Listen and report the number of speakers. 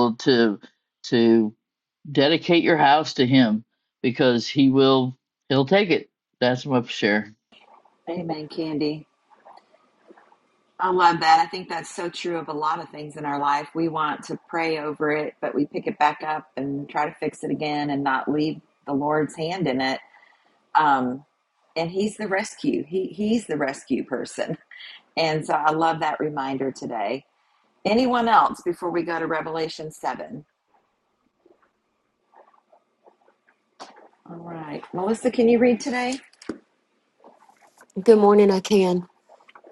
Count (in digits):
3